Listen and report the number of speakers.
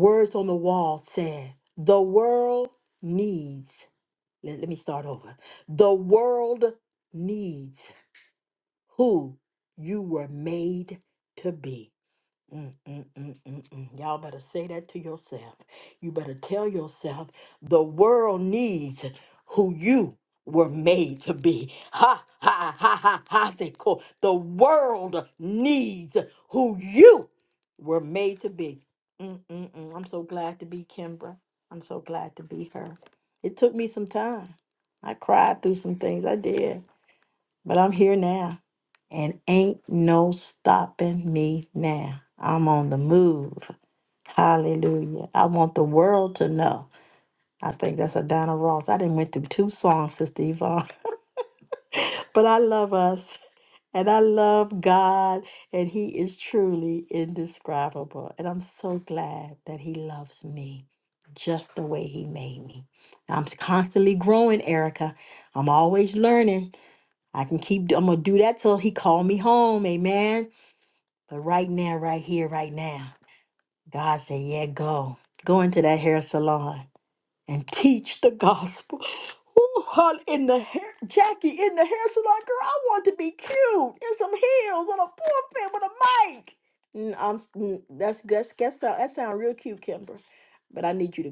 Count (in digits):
1